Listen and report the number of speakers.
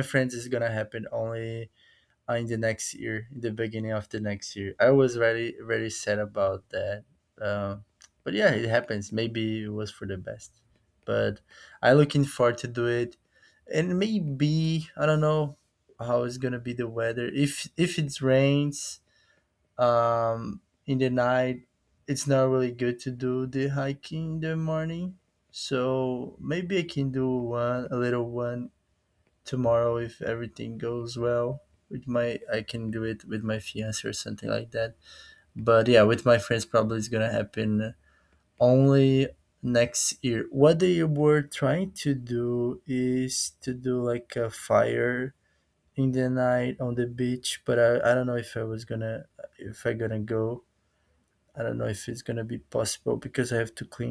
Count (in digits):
1